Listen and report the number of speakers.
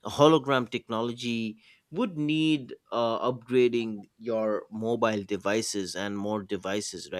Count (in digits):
1